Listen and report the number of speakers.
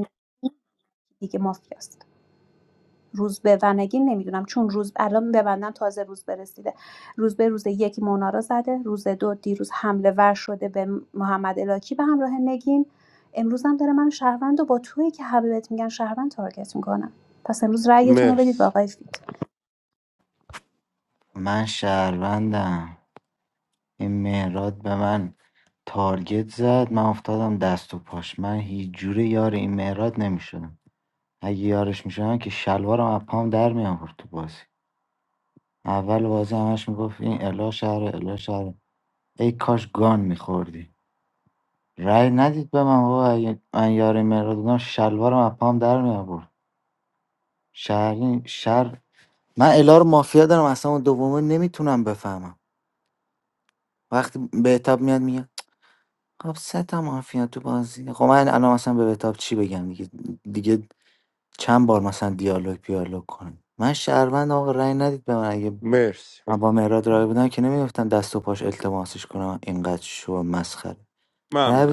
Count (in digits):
3